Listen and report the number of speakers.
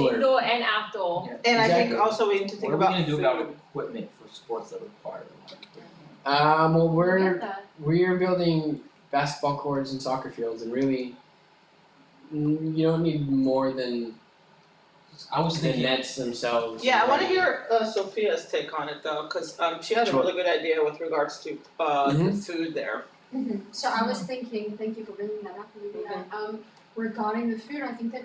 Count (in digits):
5